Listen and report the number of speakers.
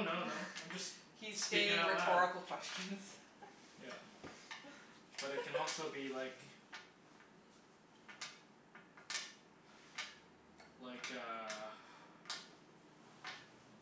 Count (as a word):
two